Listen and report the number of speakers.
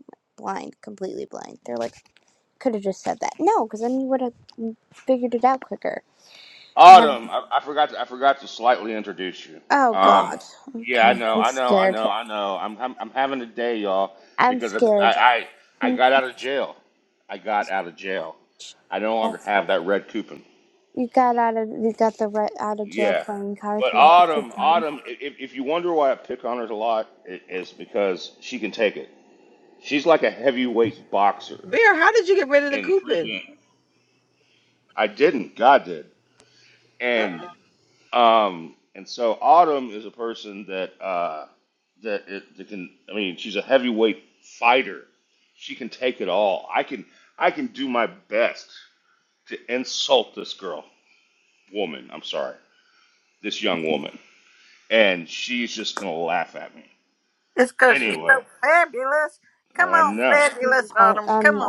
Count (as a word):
four